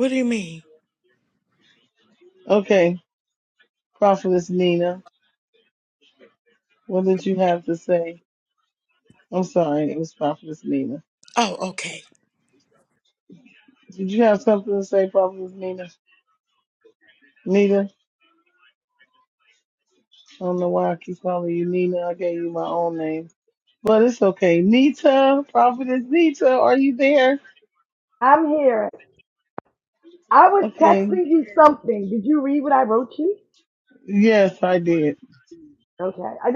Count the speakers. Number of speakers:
3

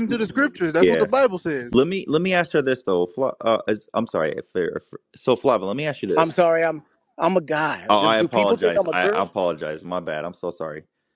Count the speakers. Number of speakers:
3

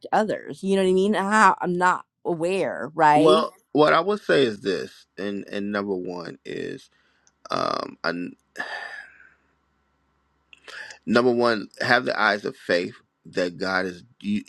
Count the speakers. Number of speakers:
2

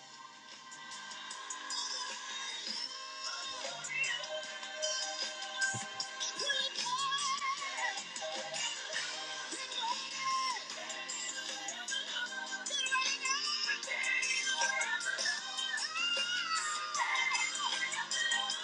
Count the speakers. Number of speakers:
0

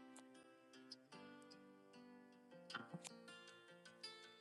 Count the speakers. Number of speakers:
0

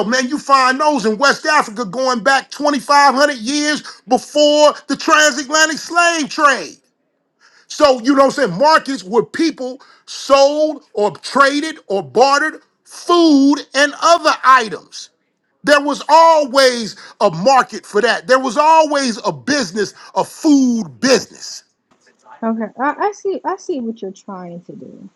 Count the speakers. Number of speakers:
2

